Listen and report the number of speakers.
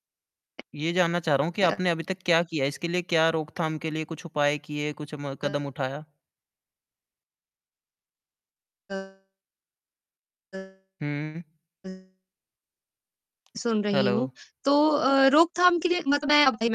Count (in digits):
2